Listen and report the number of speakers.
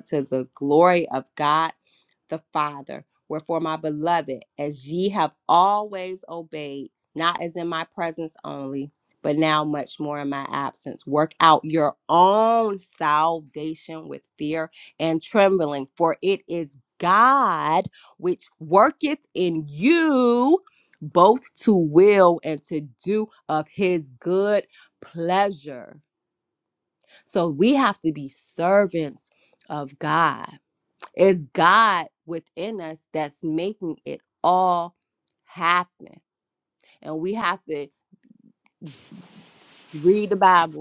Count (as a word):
one